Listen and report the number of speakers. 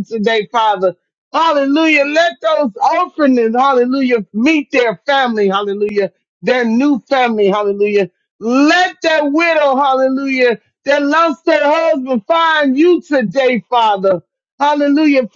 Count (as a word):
one